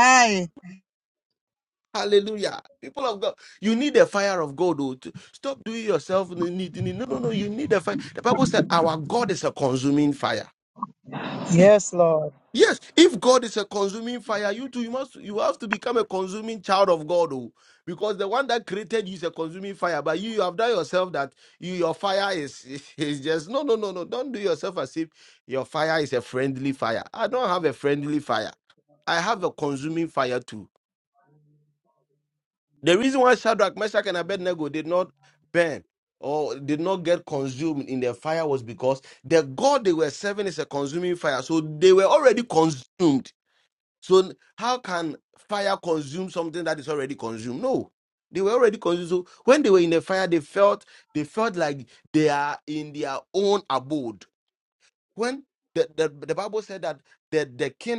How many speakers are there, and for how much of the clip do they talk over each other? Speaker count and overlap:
two, under 1%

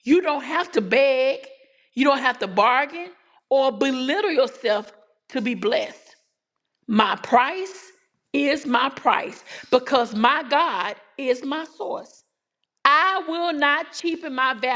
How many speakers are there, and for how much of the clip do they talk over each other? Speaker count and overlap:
one, no overlap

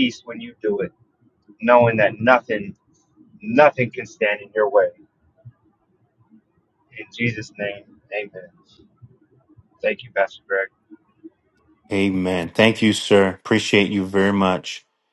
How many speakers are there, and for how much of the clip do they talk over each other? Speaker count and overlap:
two, no overlap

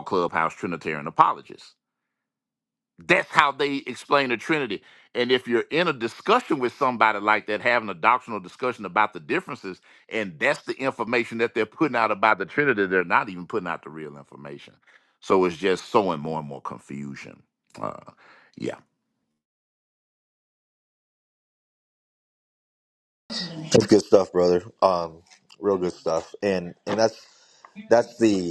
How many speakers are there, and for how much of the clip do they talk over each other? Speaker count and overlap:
two, no overlap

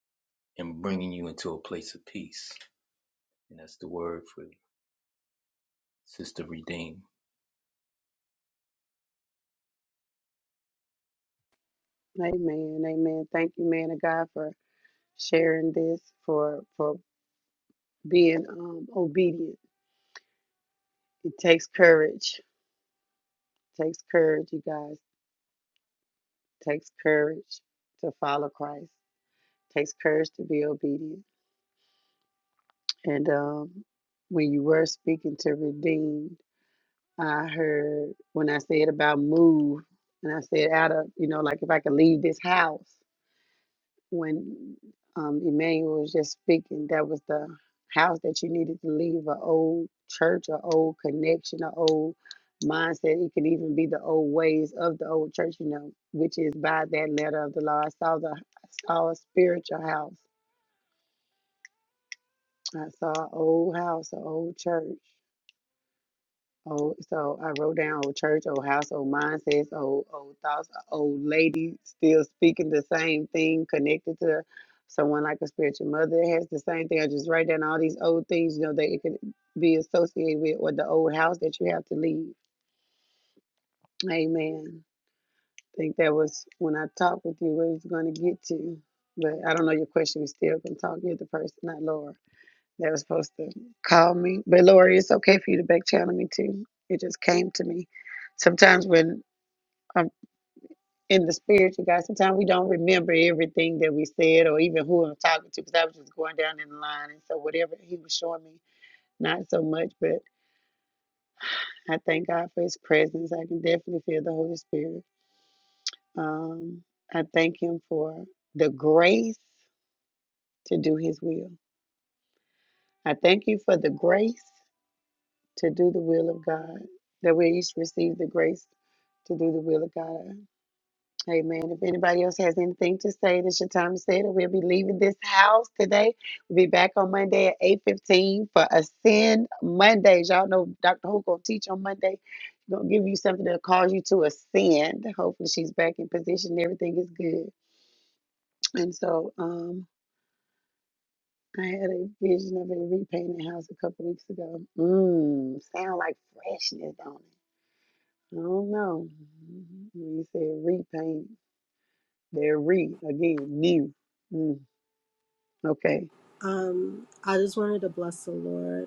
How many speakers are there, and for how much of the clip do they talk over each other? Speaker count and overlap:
three, no overlap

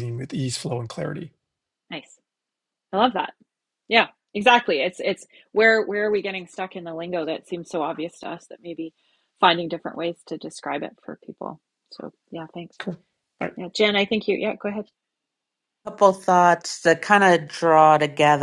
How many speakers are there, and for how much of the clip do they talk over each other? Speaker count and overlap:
three, no overlap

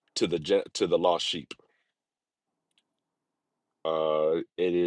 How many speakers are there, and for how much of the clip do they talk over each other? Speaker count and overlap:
one, no overlap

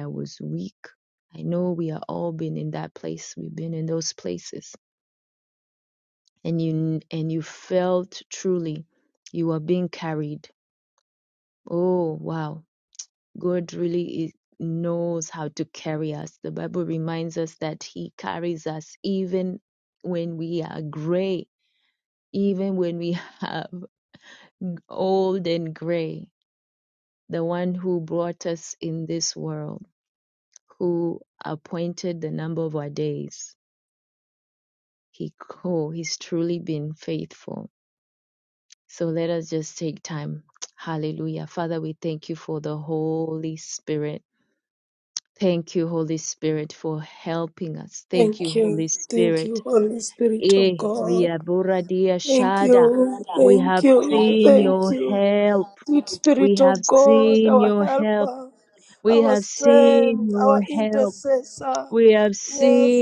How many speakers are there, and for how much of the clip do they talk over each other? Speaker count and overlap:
two, about 15%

